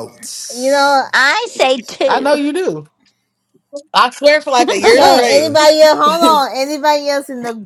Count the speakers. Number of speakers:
4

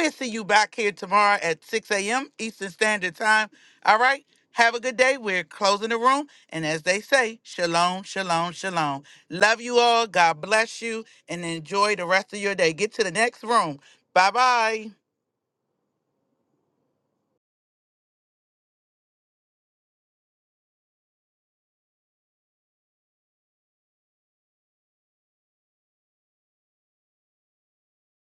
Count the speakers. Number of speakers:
1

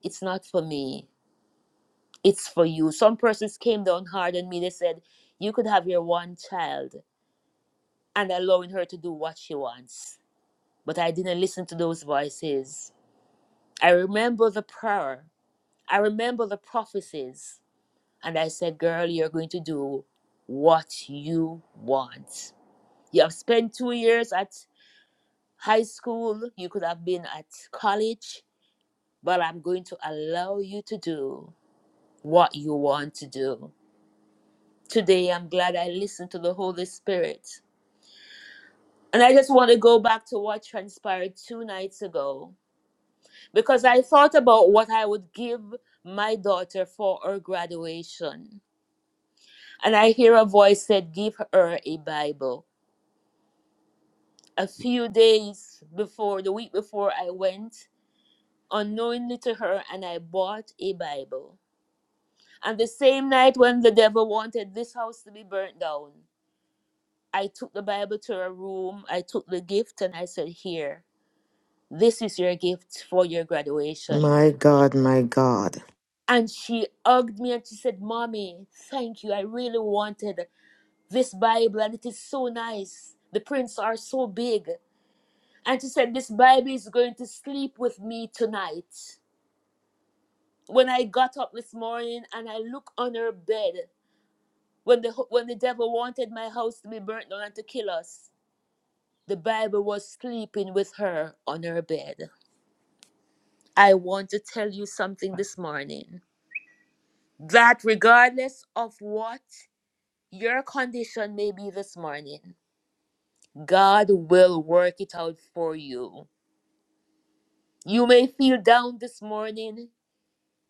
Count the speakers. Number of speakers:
2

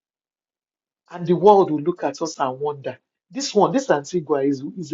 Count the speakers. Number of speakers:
1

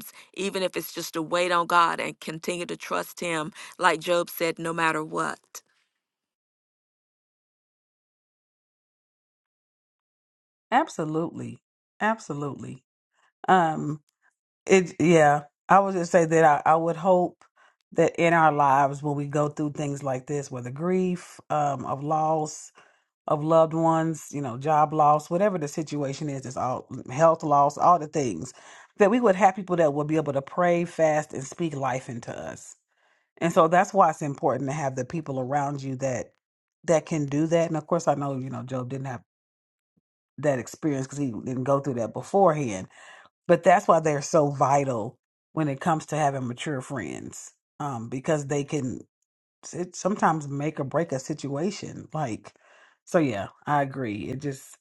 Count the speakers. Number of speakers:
2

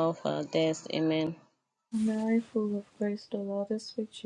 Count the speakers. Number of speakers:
2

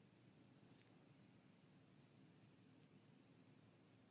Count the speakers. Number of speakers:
0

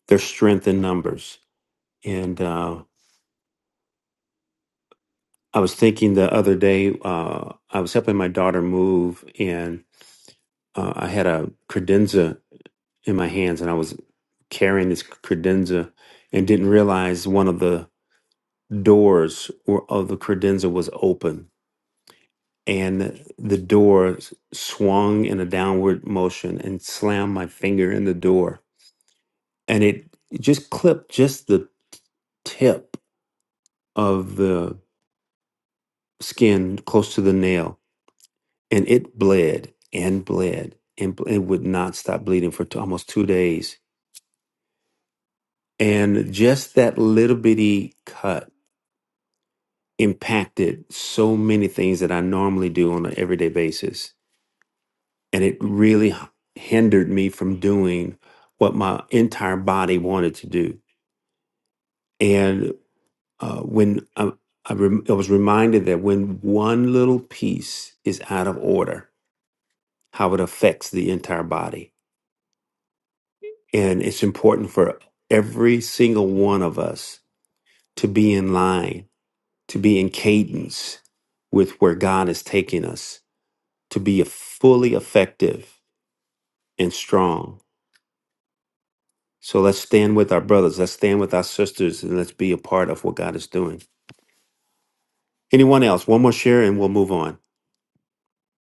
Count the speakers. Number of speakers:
1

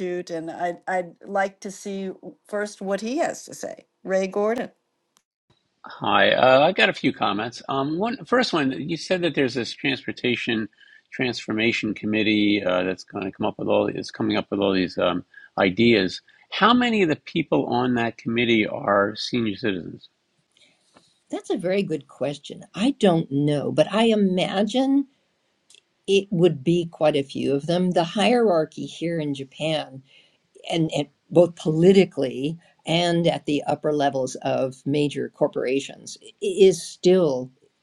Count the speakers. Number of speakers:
3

